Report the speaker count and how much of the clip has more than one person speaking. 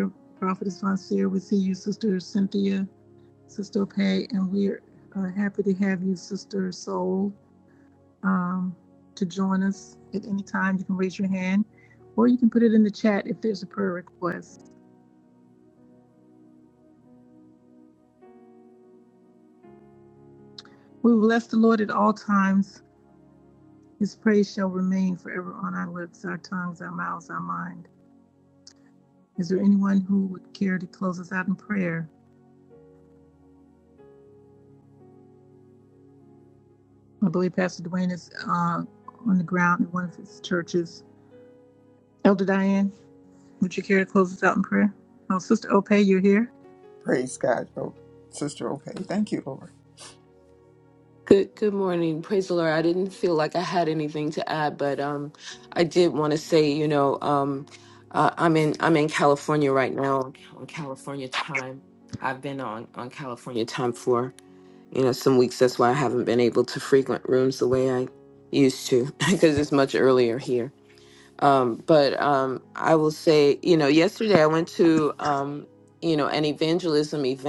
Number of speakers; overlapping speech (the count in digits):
3, no overlap